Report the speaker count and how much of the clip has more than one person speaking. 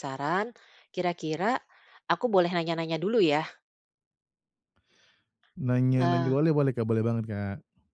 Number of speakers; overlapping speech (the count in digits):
2, about 5%